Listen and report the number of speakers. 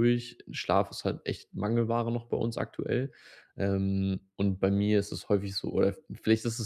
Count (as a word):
one